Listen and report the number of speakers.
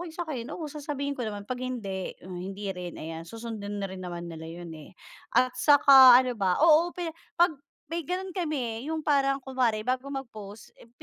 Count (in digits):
1